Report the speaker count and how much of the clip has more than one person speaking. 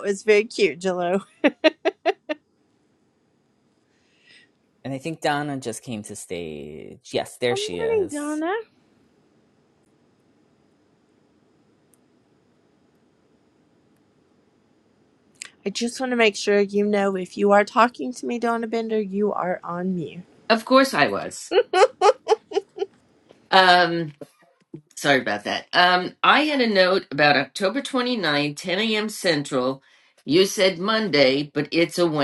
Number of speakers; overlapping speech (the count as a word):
three, about 2%